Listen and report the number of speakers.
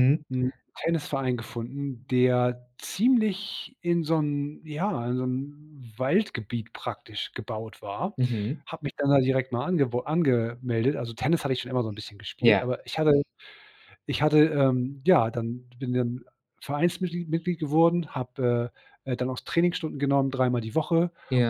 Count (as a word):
two